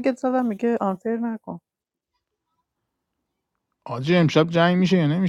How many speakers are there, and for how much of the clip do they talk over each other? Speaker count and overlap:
2, no overlap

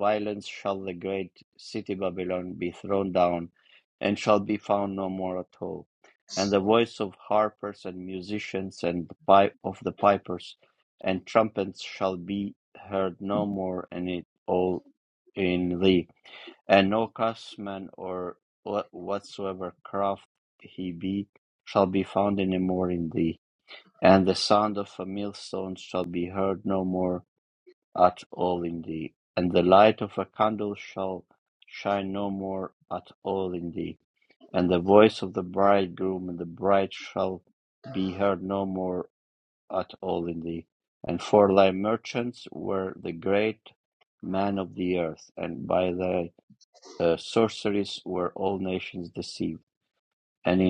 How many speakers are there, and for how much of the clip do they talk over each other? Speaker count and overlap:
1, no overlap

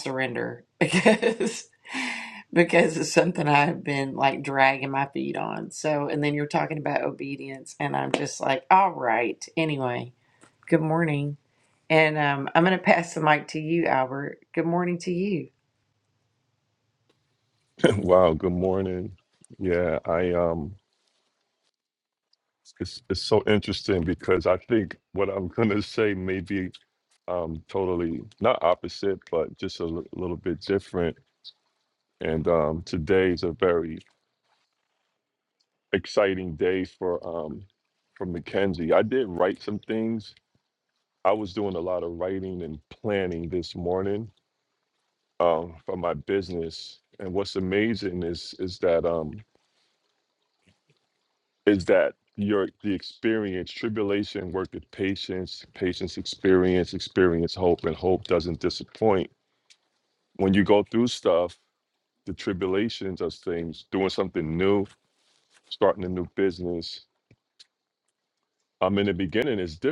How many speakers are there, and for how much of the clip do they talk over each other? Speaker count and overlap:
2, no overlap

